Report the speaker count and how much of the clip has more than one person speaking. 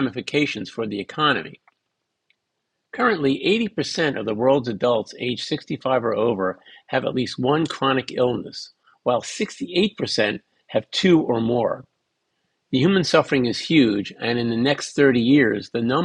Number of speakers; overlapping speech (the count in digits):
1, no overlap